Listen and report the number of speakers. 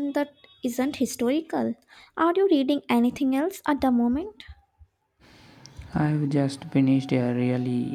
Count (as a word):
two